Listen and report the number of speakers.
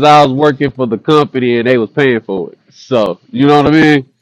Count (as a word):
one